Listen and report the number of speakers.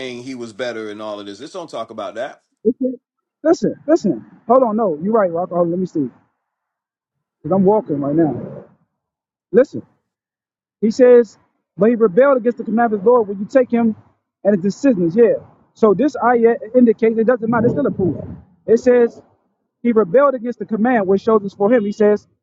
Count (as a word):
two